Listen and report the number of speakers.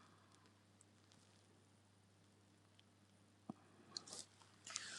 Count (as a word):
zero